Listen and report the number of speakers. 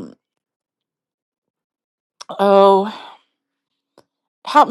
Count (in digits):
1